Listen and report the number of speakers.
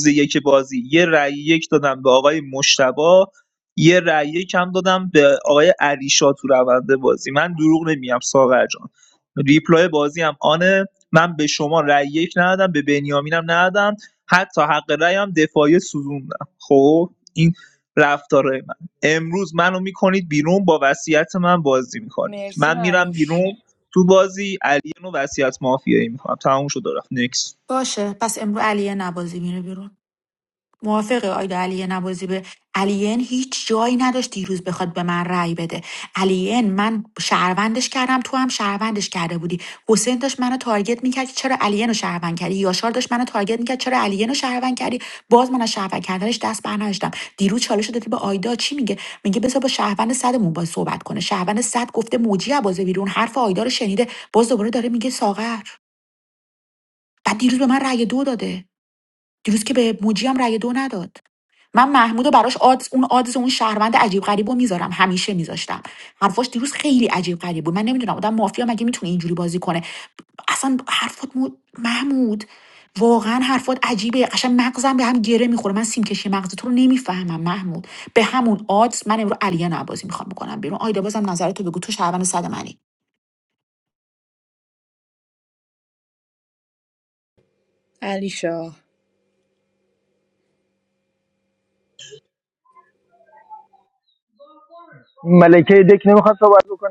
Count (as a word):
four